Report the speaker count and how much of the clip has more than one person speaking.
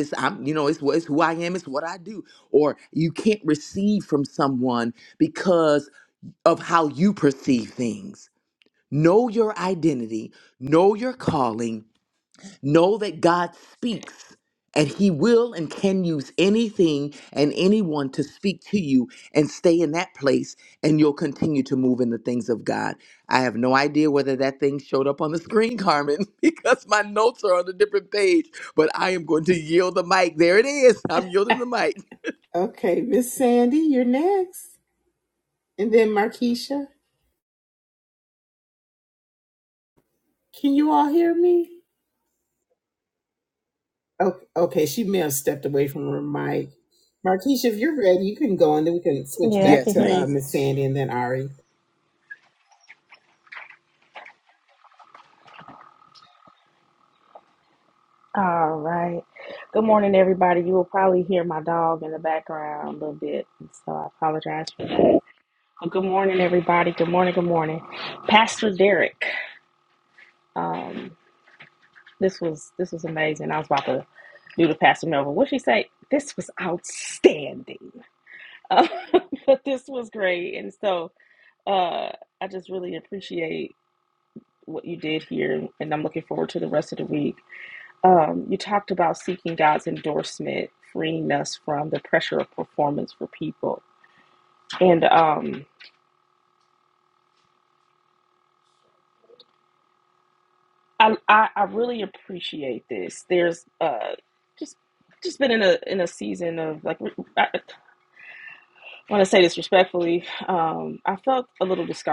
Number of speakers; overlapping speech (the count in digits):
3, about 1%